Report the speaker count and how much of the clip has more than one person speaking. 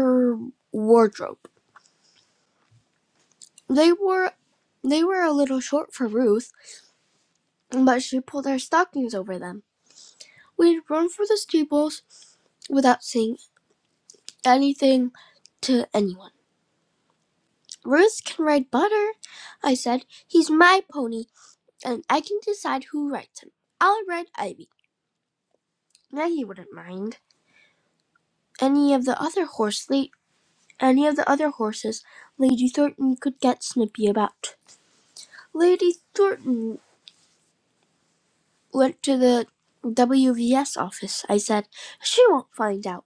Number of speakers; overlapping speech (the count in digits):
1, no overlap